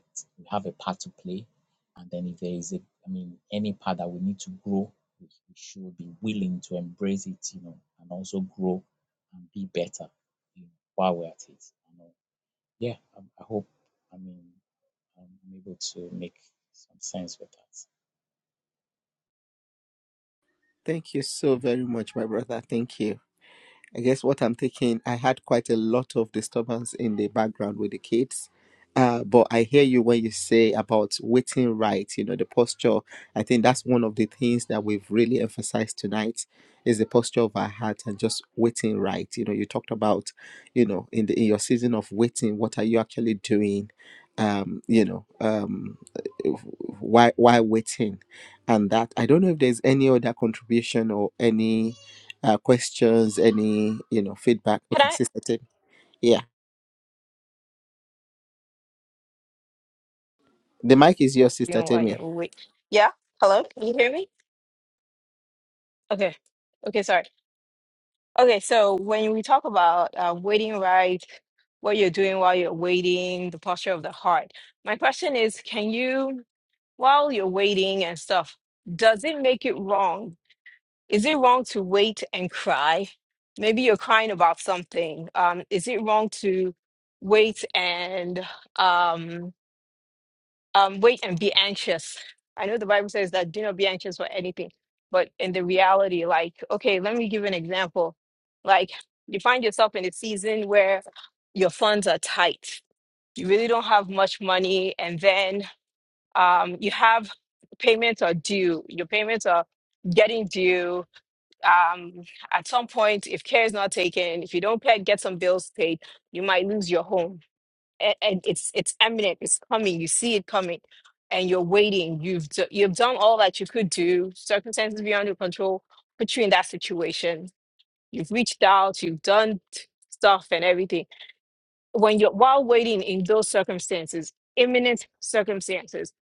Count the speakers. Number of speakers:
three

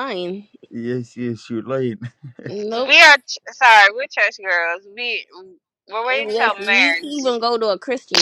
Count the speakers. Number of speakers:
three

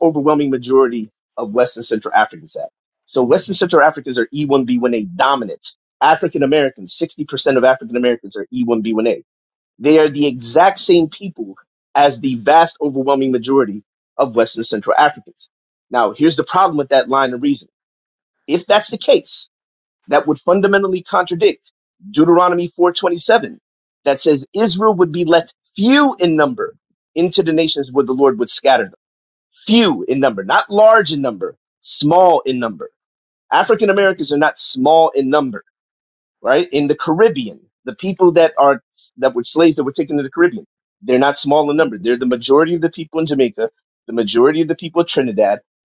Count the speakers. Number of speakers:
one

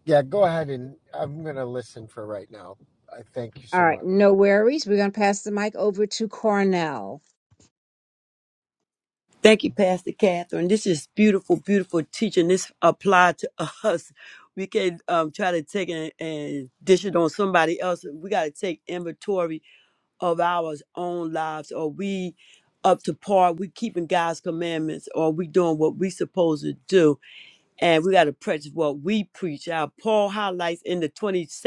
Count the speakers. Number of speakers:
three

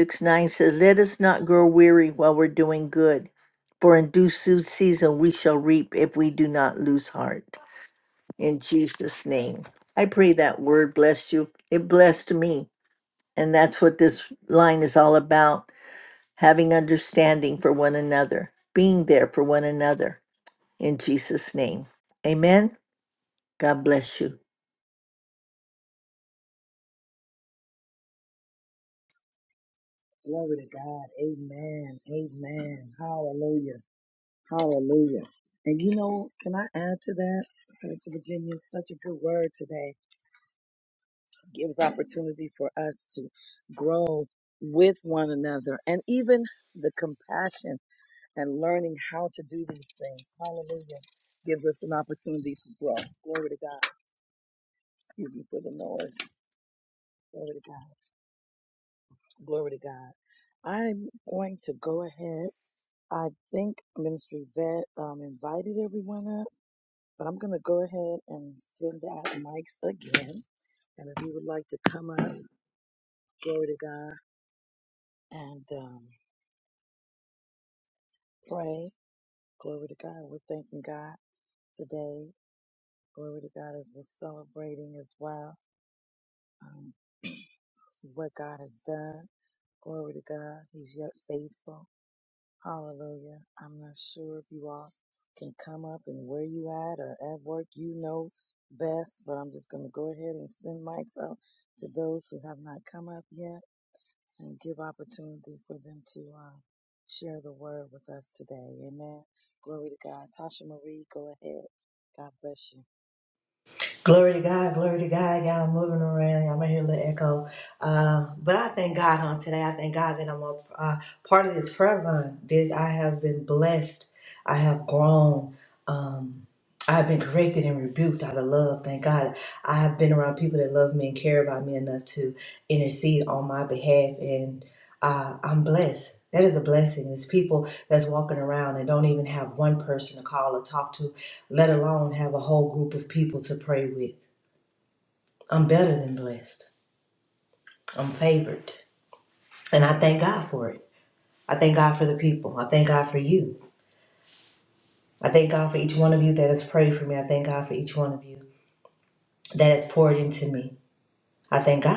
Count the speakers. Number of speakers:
three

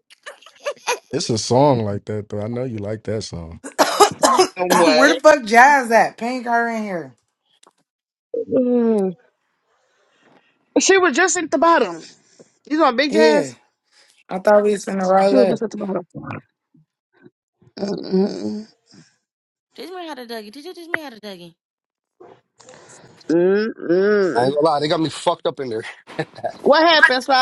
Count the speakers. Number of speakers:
five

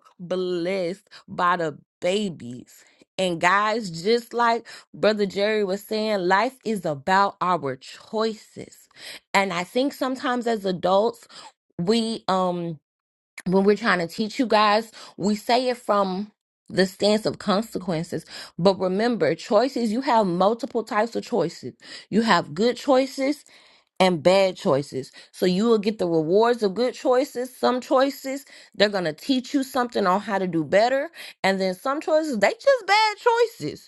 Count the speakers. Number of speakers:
one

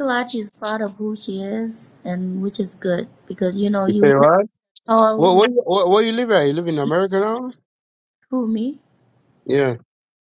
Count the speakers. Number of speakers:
two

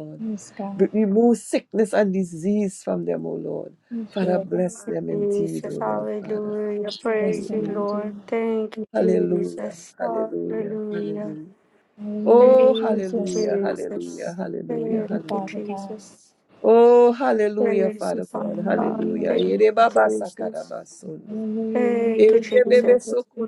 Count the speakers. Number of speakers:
three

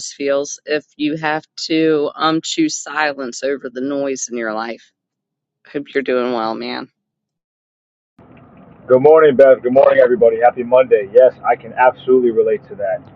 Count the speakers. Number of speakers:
two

